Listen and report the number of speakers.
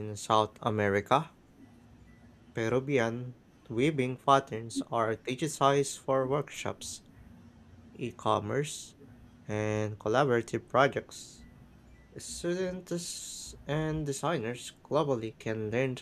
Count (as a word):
one